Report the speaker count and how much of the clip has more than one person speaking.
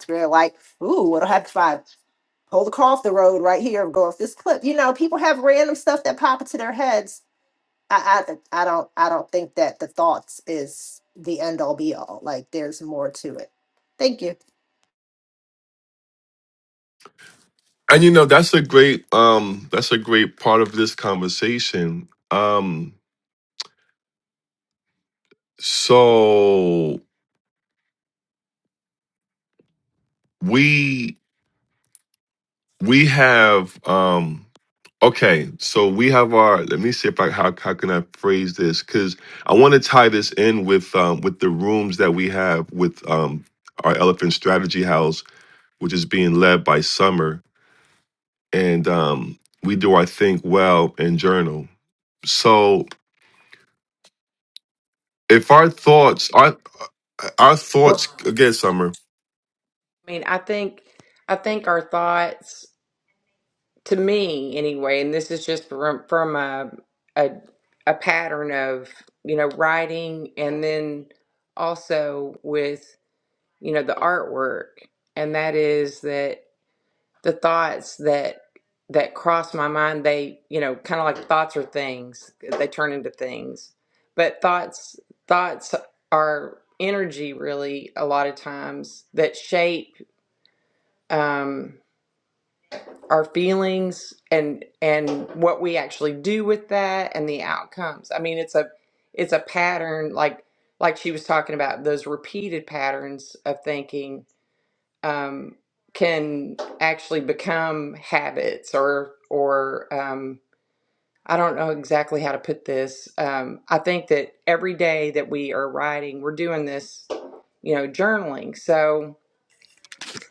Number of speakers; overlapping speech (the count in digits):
3, under 1%